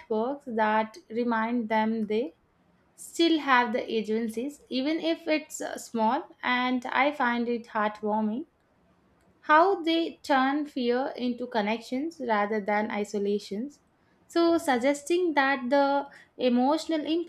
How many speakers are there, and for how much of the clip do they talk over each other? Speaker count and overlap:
1, no overlap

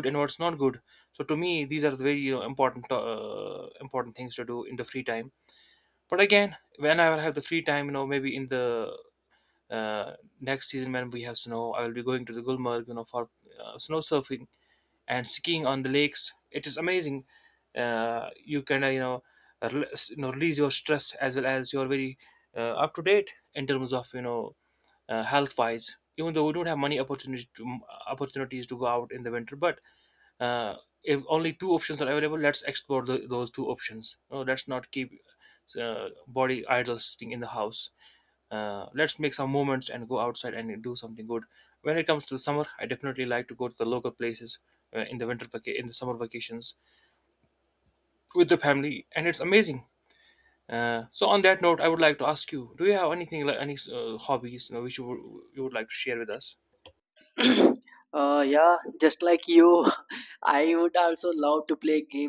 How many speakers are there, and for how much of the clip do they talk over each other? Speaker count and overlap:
2, no overlap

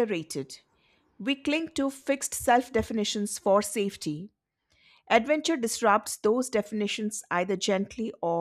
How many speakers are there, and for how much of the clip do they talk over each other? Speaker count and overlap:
1, no overlap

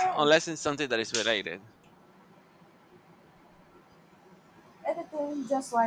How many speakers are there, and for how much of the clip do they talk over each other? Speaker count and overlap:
2, about 5%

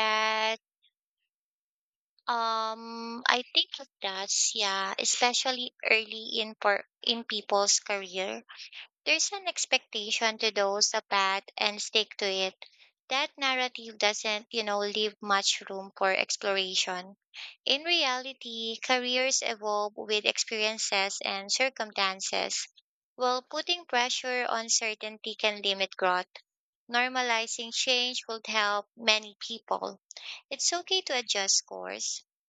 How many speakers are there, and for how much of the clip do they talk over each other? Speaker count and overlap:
1, no overlap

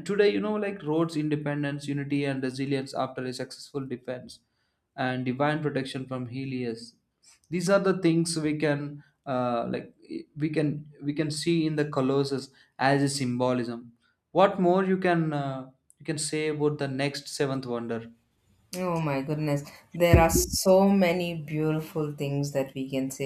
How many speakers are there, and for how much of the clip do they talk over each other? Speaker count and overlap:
2, no overlap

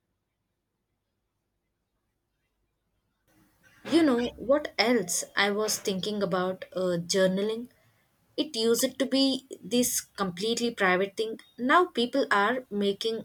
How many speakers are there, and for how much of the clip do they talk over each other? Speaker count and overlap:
1, no overlap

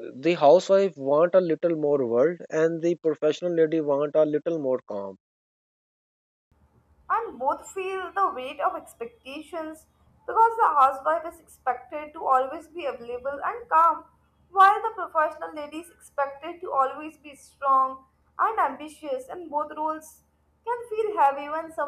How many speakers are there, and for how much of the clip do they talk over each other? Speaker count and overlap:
2, no overlap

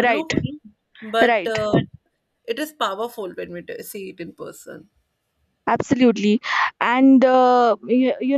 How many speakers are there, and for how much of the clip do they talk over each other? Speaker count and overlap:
2, about 9%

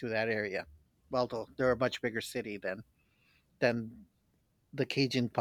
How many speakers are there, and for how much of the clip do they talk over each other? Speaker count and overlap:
1, no overlap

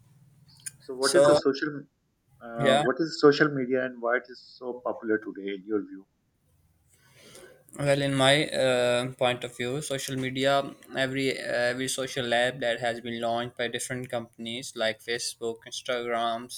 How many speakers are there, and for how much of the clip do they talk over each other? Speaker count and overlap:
2, about 4%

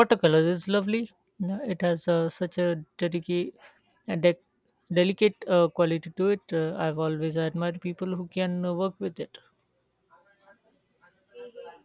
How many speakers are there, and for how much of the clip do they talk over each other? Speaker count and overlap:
1, no overlap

